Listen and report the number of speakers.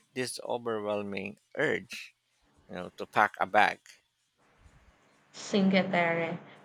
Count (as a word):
two